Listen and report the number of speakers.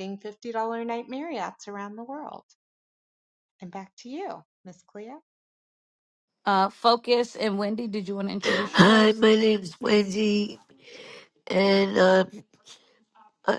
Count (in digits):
3